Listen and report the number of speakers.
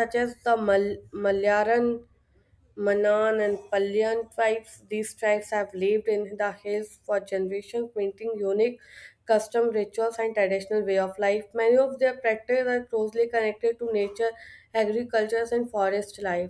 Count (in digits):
1